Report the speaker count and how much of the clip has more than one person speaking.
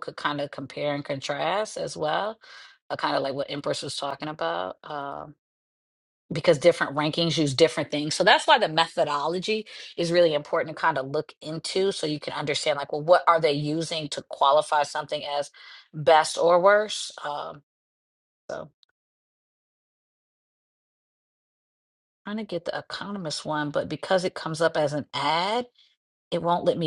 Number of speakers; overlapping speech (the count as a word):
one, no overlap